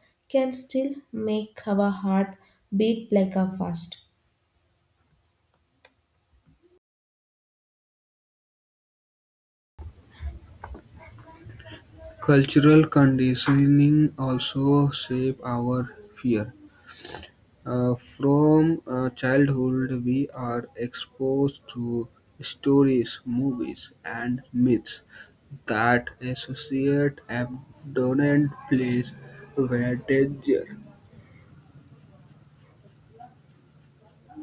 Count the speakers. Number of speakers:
two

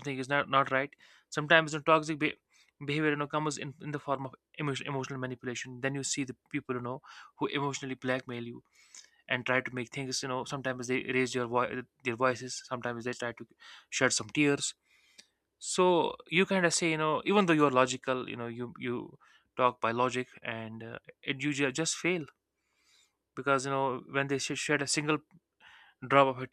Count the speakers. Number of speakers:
one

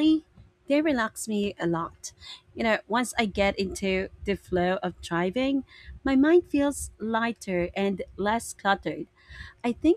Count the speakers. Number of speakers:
one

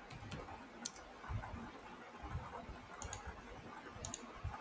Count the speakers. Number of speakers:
zero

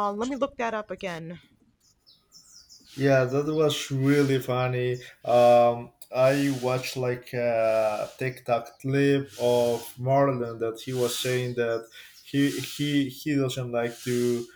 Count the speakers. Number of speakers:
two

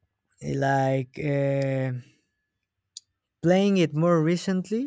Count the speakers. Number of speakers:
one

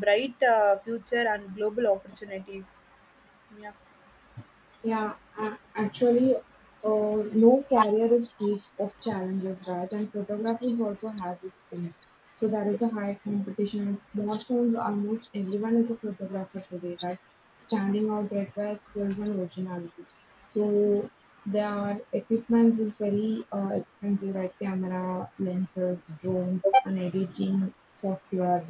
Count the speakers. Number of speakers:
two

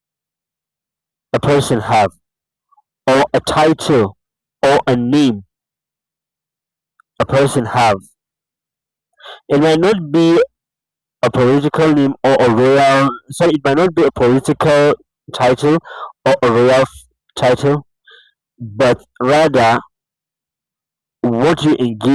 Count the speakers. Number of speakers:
one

